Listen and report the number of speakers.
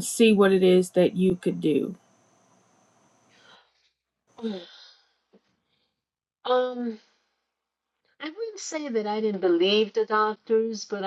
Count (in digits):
2